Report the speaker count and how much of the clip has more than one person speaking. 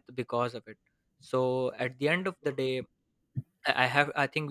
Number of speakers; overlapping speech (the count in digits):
1, no overlap